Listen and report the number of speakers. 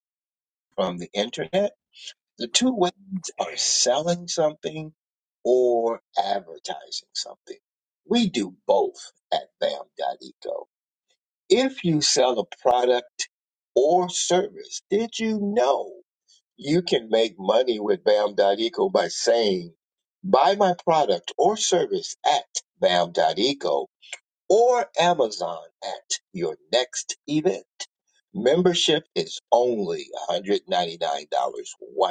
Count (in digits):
1